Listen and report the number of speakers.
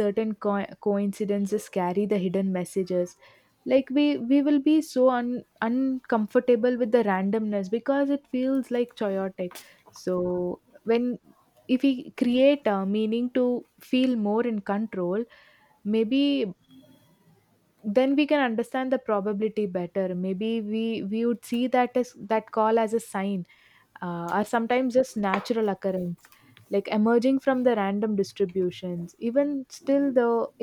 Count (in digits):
1